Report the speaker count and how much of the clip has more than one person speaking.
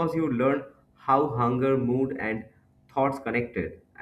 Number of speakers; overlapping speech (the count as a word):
one, no overlap